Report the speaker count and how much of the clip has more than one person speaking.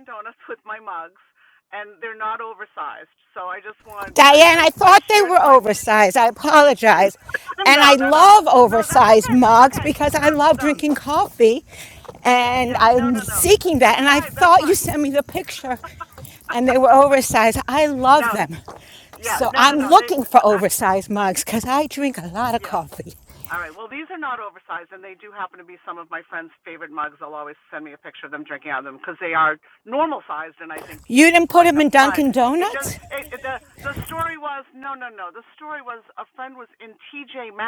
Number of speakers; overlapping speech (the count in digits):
2, about 24%